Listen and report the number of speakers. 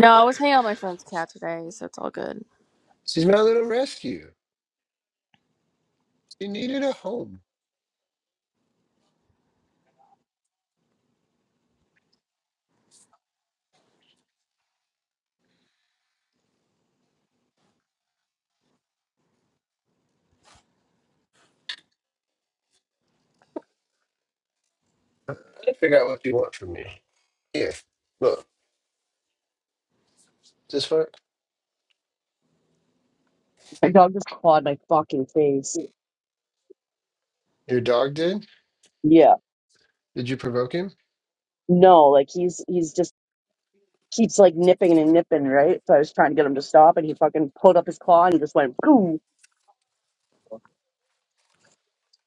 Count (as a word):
three